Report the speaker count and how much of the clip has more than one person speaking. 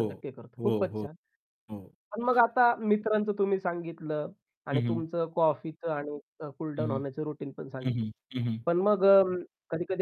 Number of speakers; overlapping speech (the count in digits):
2, about 11%